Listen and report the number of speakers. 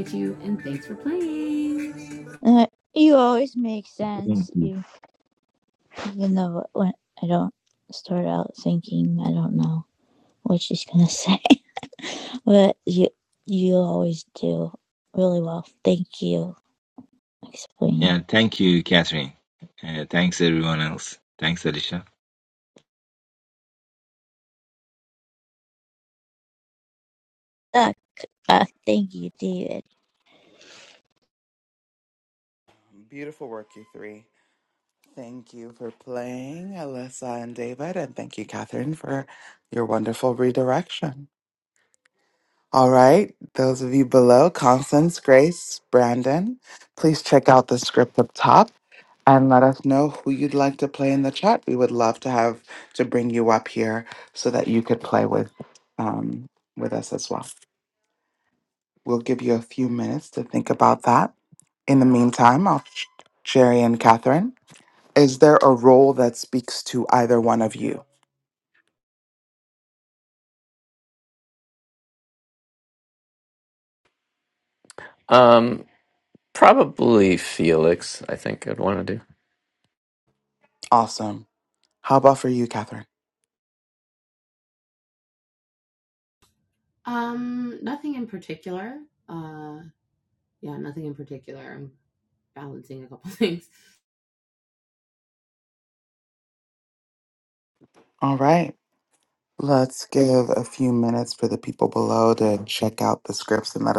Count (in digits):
5